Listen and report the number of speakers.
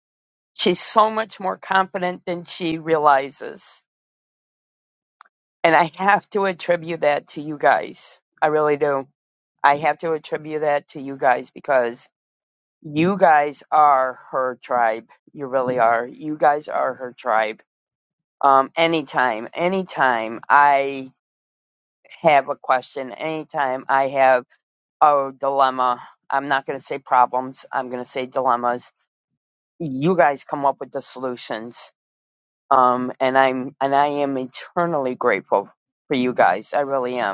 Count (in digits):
1